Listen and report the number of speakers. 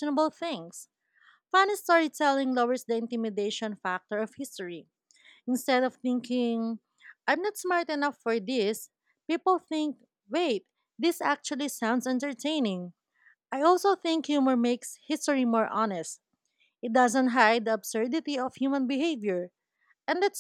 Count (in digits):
1